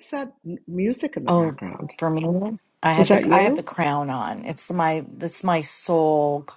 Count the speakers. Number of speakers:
2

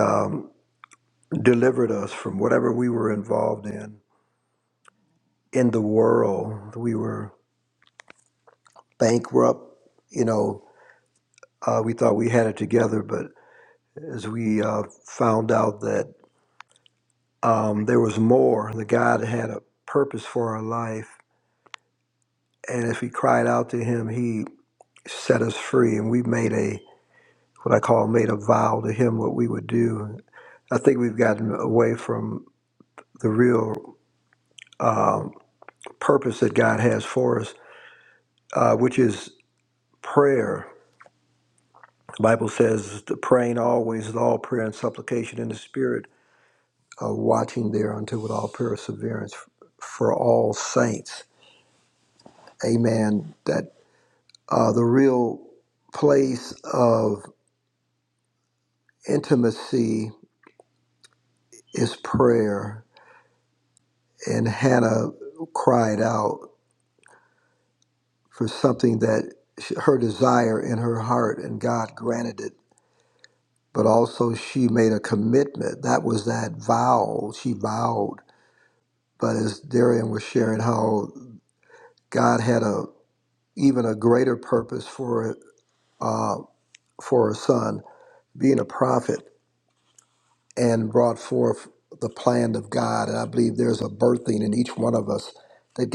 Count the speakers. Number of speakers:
1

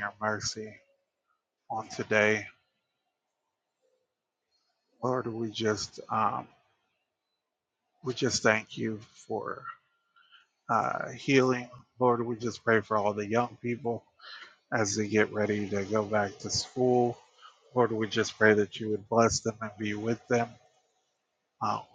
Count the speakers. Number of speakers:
1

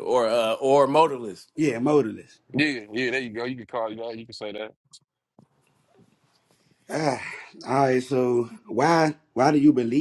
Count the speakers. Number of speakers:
3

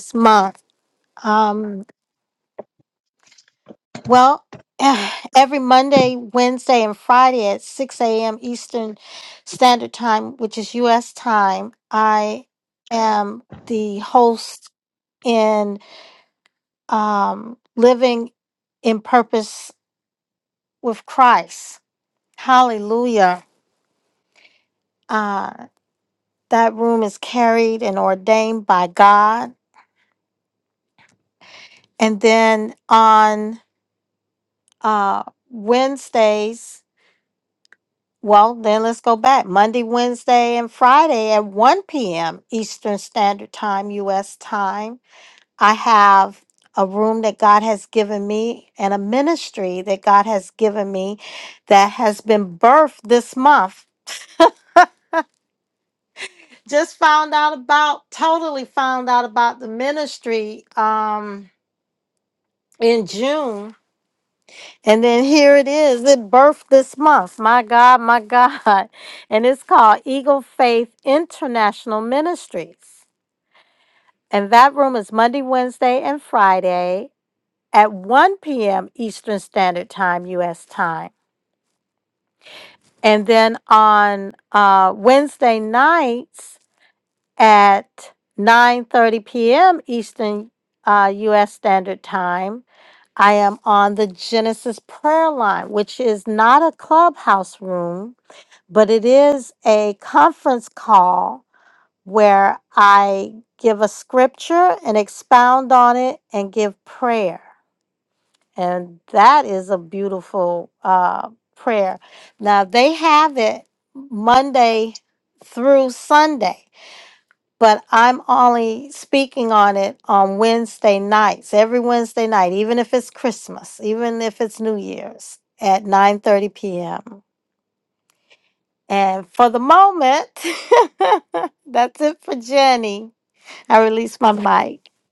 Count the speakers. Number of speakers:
1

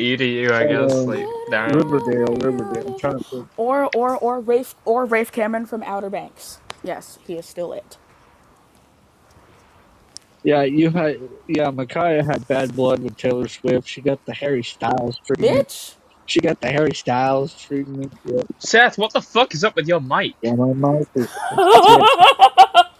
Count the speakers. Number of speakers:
3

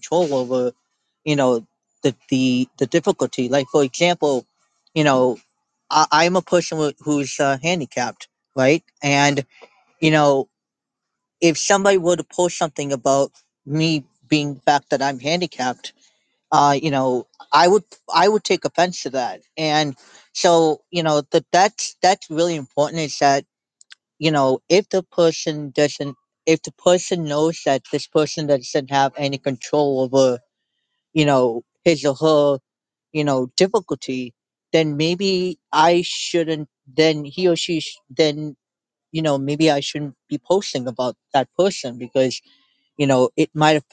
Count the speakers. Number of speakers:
1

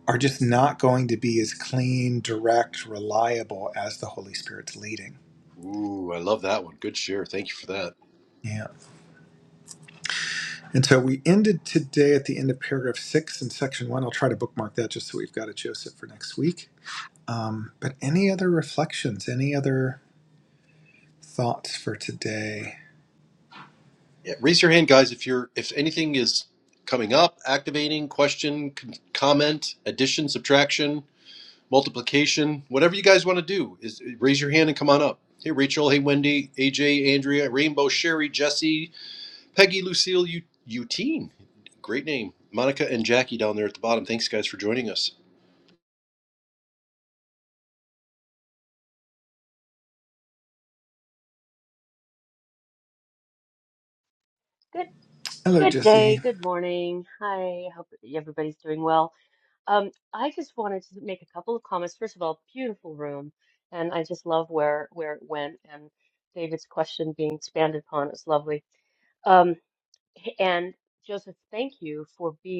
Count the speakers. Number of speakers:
3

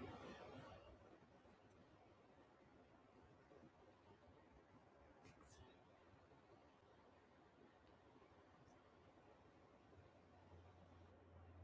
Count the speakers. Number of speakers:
0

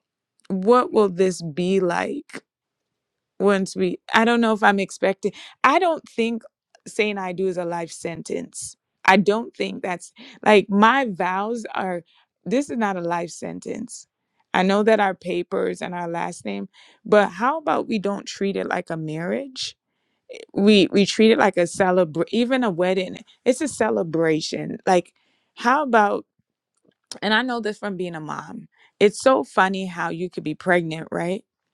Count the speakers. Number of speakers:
1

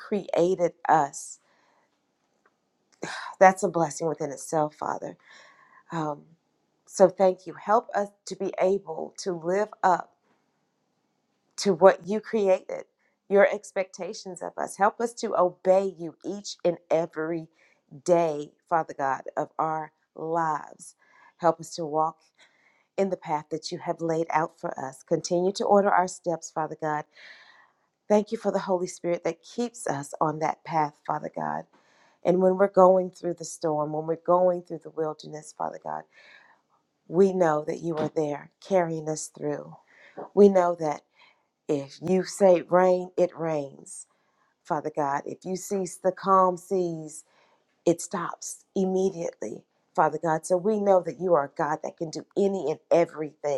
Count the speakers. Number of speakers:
1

